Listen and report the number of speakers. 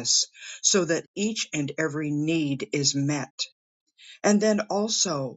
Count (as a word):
one